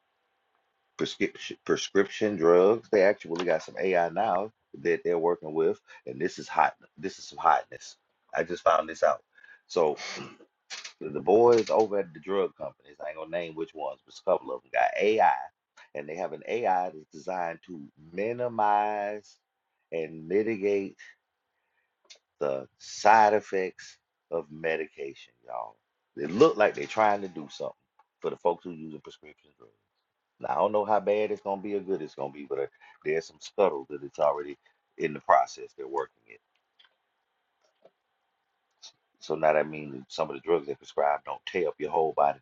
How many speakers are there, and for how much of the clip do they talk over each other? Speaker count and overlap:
1, no overlap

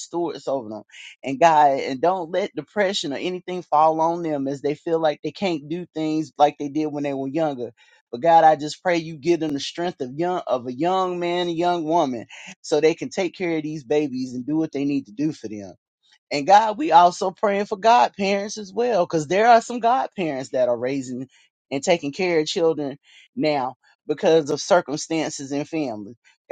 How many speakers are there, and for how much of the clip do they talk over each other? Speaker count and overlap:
1, no overlap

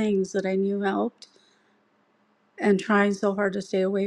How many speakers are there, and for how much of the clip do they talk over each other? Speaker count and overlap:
1, no overlap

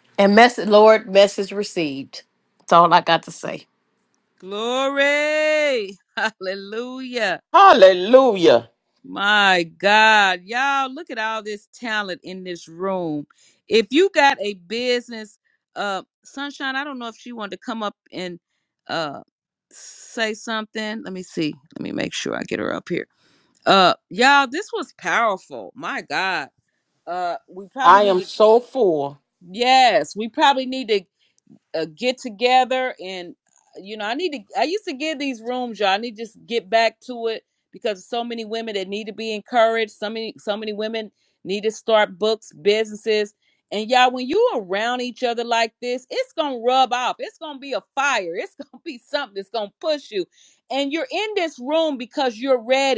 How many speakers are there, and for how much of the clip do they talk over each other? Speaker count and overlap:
3, about 1%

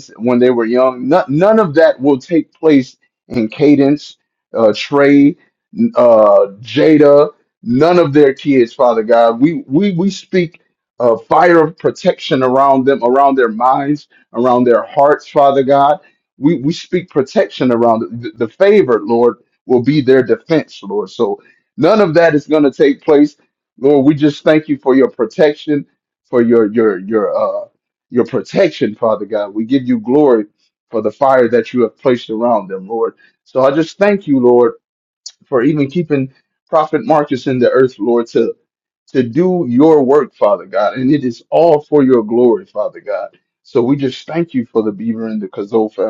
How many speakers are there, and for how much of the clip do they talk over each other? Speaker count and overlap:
1, no overlap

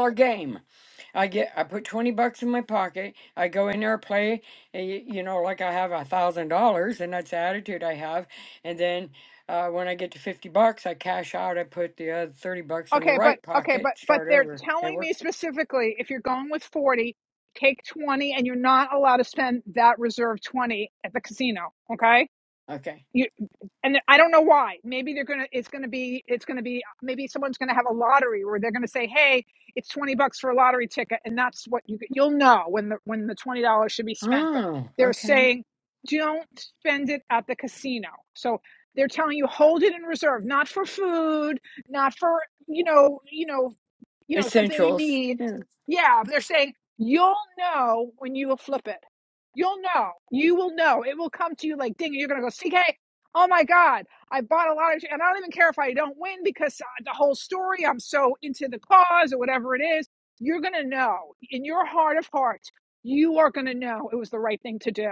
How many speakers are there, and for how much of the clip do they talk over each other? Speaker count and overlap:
2, about 6%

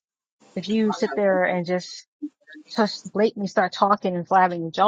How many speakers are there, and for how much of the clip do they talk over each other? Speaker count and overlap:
1, no overlap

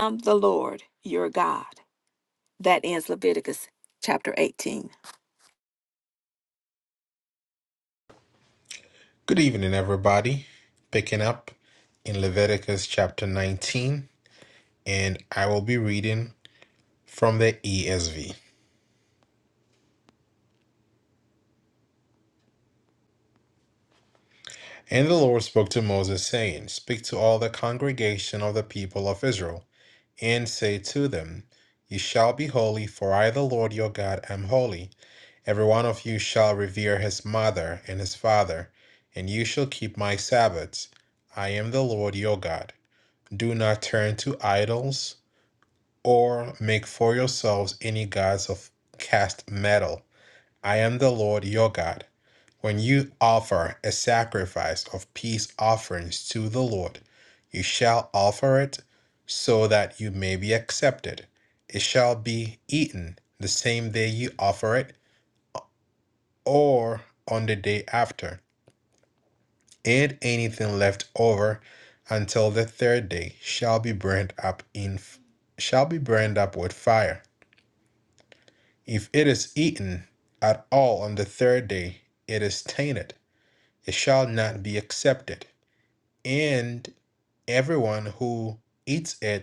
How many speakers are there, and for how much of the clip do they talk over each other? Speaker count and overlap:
2, no overlap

